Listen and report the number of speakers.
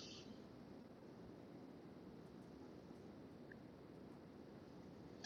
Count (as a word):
zero